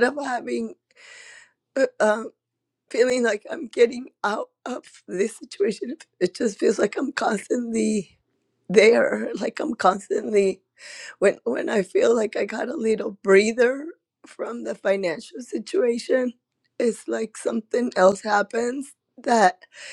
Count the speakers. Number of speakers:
1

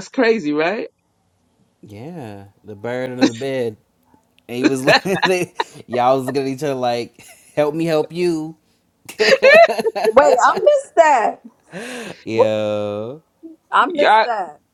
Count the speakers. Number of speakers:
3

